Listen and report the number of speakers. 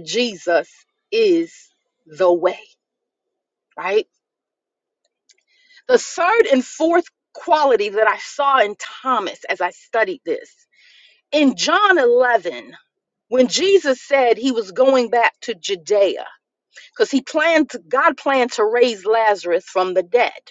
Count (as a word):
one